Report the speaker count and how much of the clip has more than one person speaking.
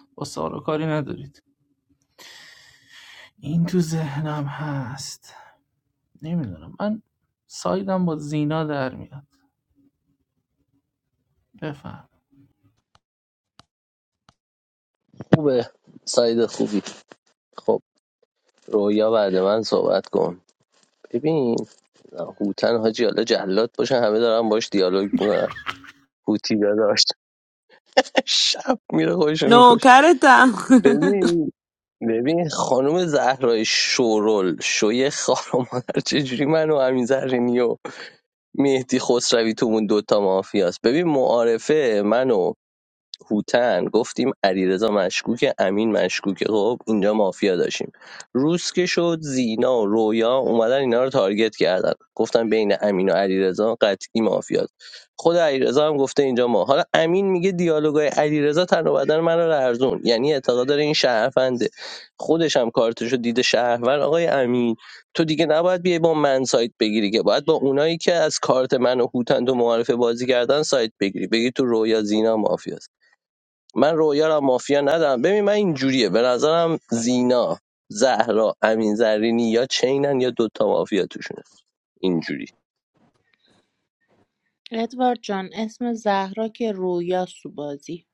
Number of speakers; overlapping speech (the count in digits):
4, about 1%